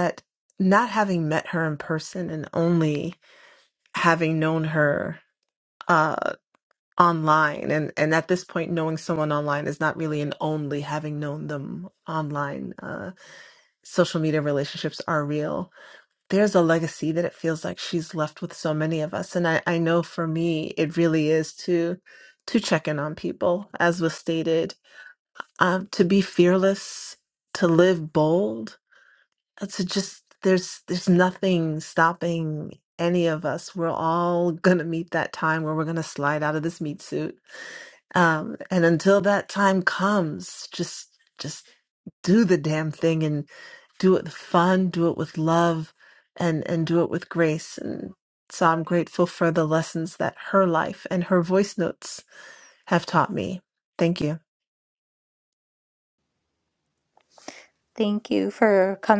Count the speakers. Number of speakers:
2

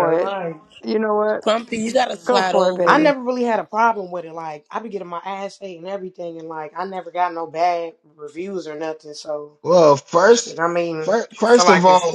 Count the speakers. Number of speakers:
4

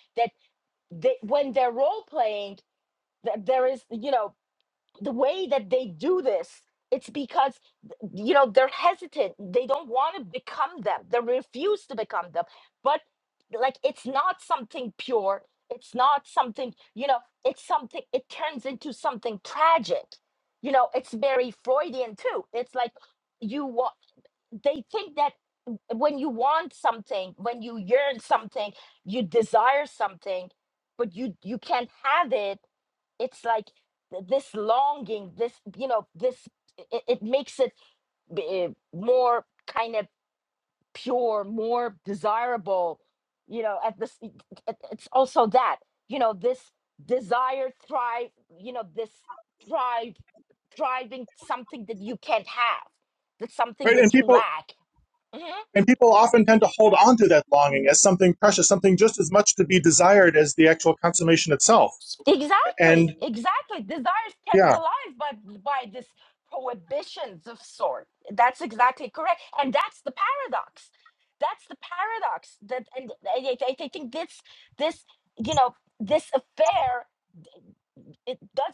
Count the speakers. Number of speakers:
2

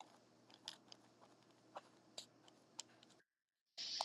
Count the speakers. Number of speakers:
0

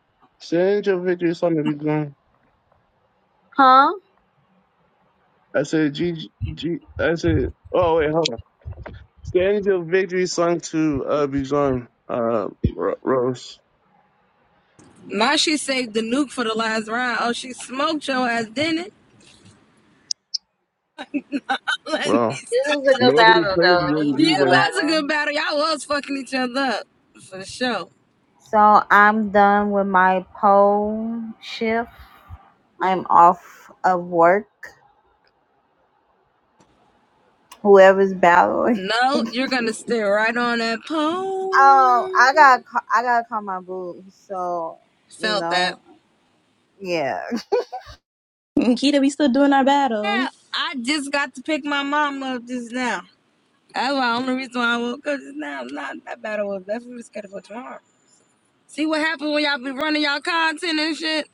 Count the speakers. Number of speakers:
4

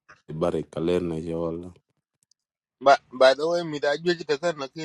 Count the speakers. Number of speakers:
2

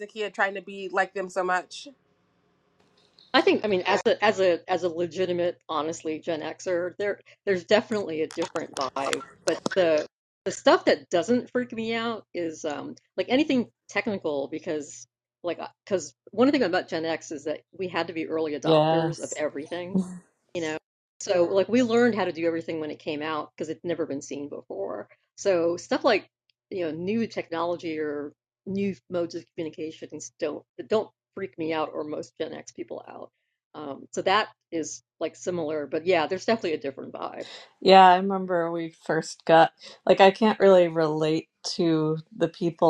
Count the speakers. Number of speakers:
3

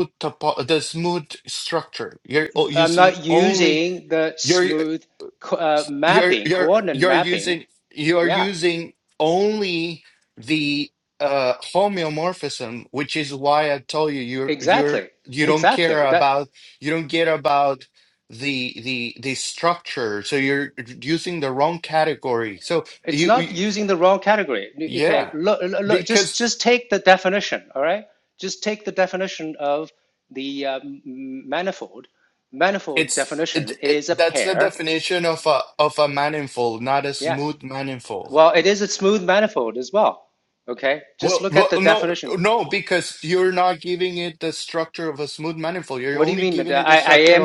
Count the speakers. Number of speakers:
2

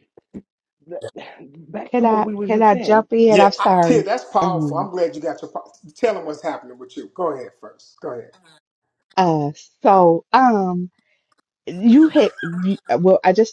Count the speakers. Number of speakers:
3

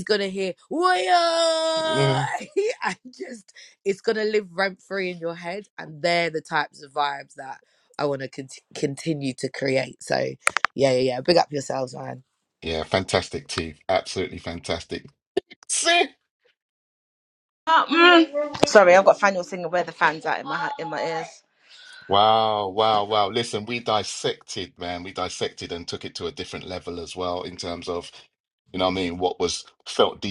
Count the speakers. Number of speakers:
3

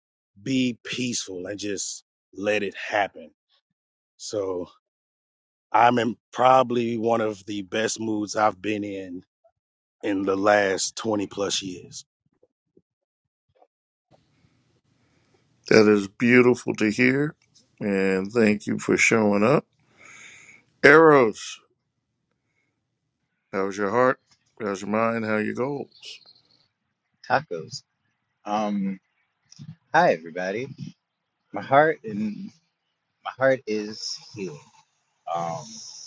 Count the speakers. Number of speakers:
3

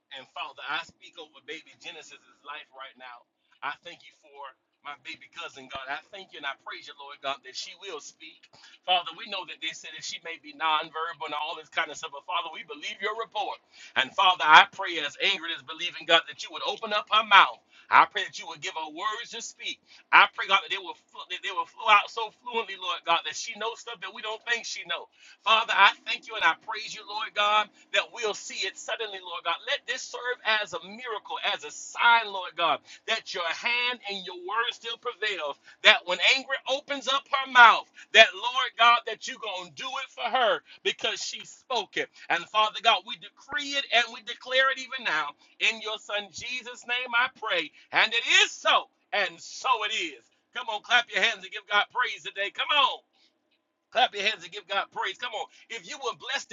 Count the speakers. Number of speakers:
1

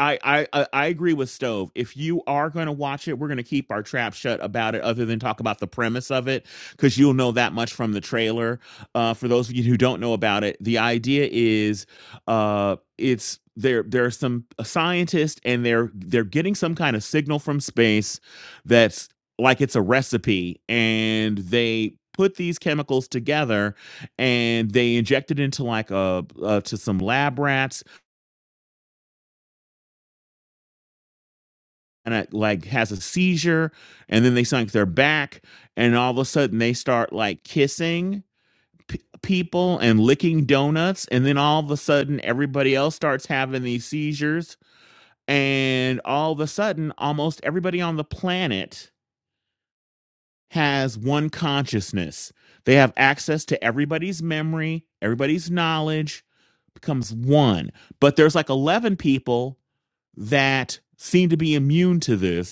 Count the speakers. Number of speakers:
1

